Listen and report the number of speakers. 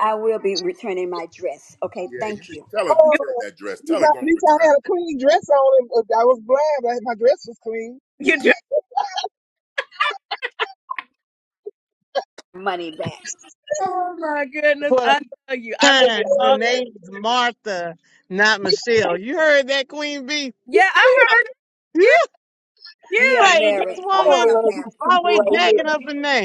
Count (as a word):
five